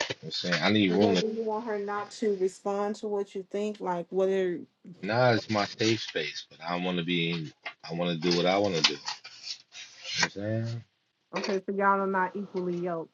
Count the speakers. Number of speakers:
2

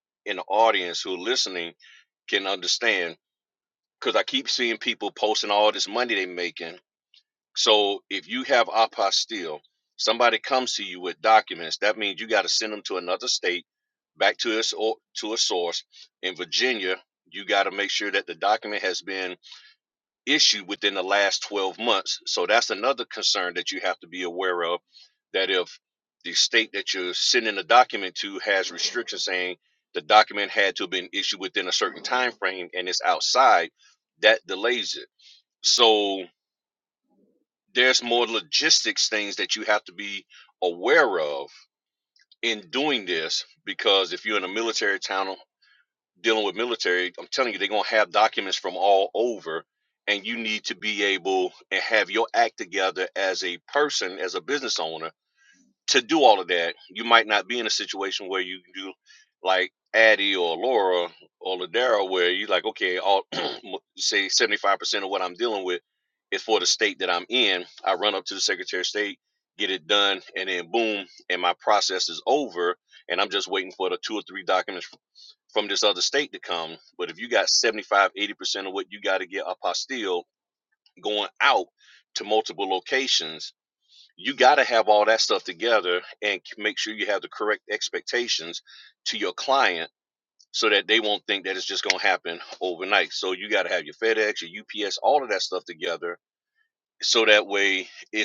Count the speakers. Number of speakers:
1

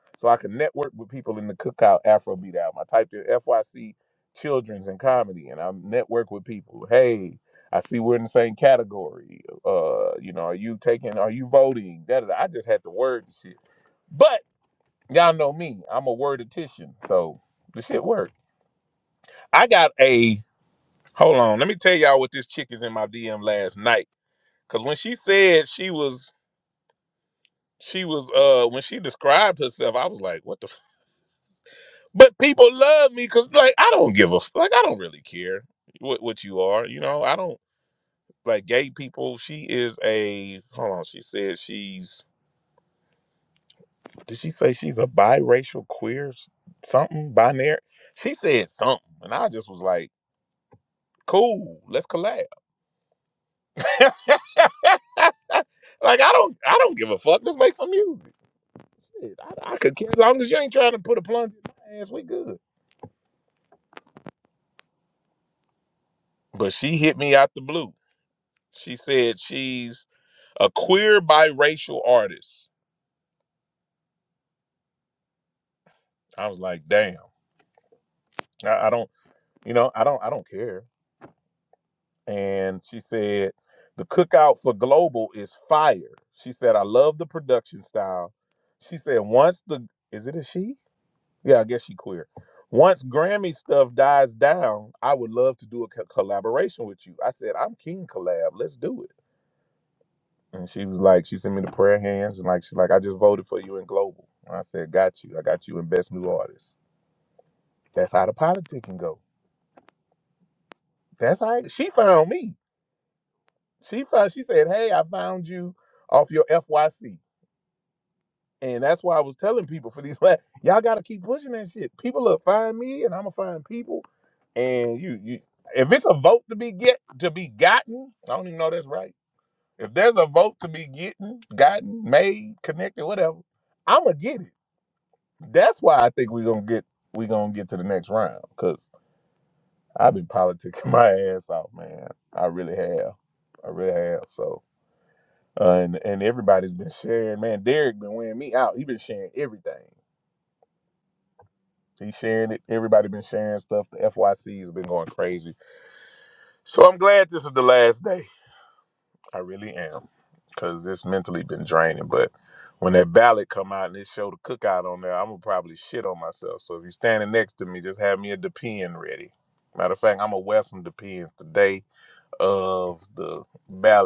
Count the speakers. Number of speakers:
1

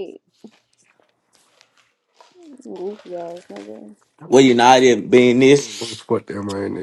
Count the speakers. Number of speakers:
3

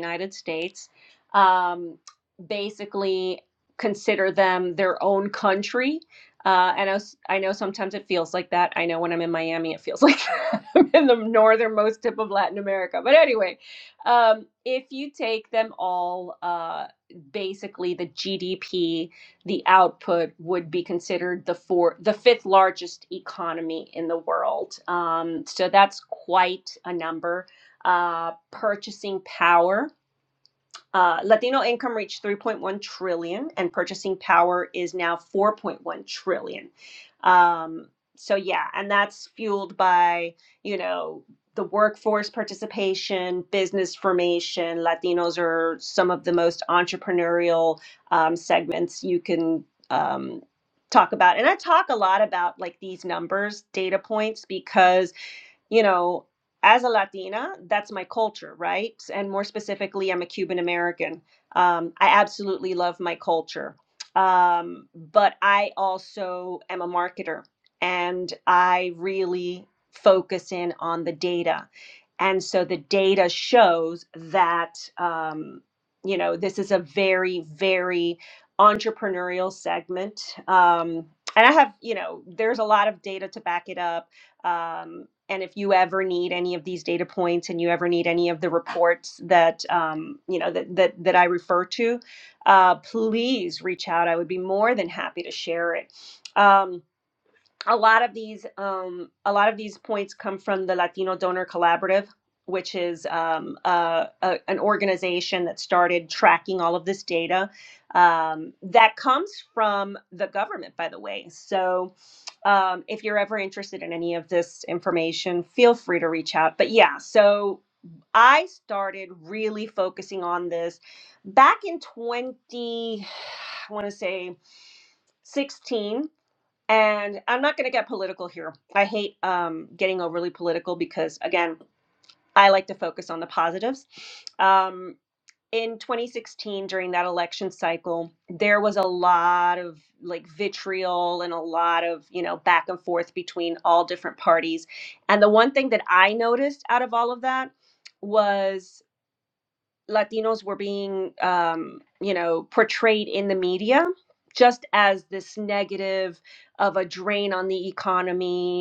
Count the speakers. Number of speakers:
1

